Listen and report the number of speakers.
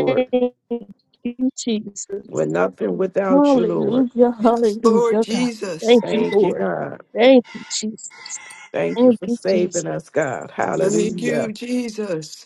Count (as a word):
three